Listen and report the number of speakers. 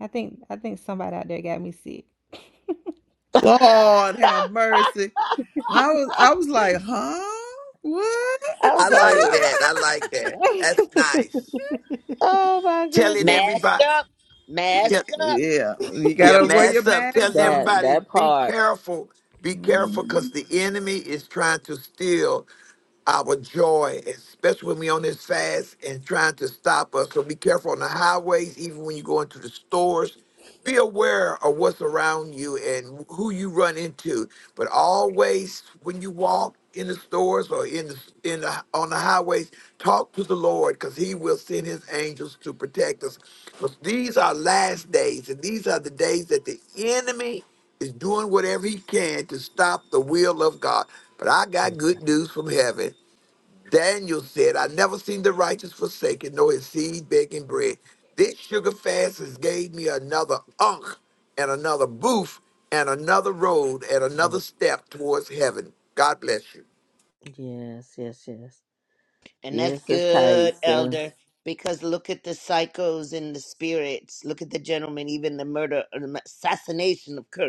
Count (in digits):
5